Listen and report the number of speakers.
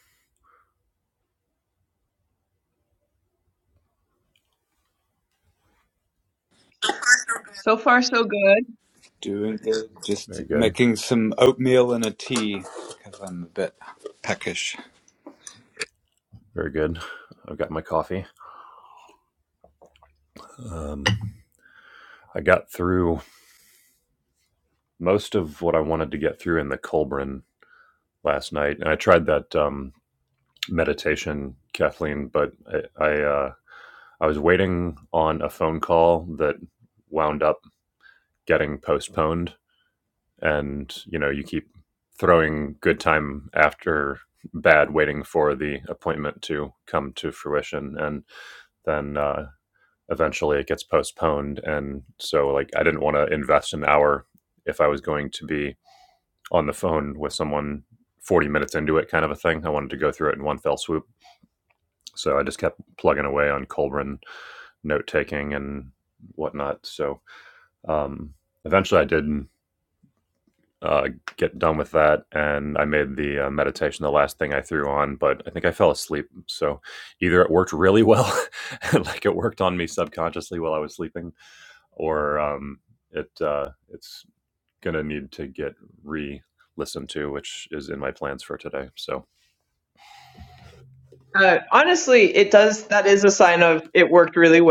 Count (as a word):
three